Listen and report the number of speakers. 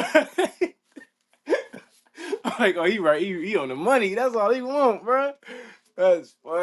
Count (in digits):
1